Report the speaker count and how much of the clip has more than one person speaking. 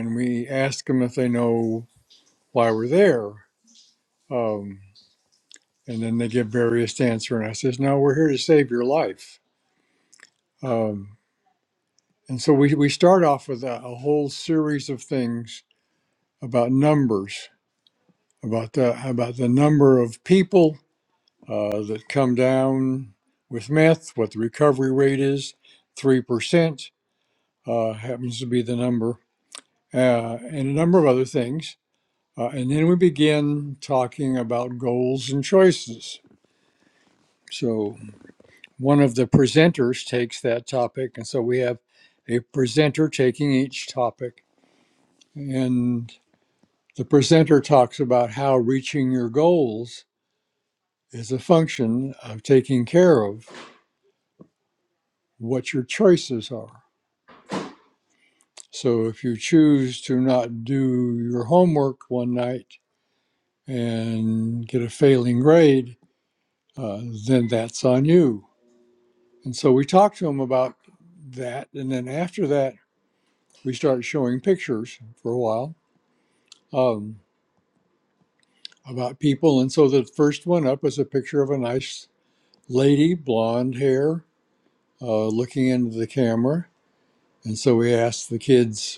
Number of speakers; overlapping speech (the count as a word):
one, no overlap